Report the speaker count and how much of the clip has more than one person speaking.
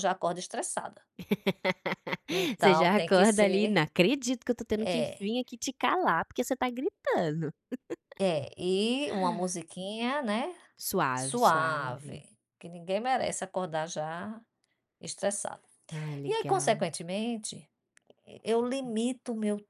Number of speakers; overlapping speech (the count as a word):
two, about 16%